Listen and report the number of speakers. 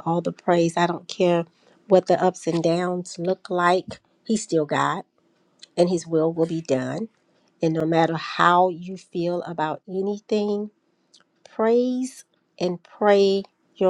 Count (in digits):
1